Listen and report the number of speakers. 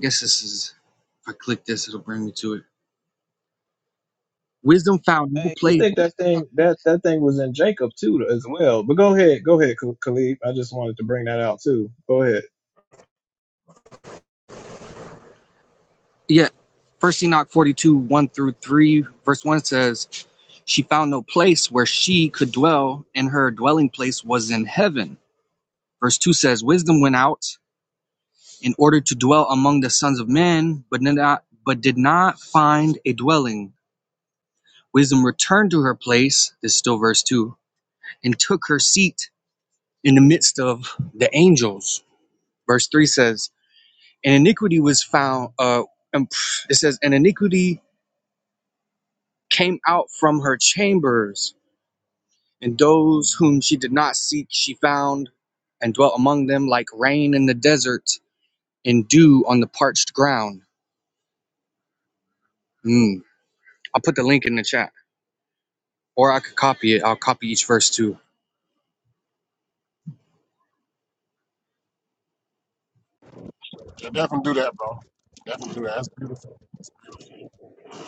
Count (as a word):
three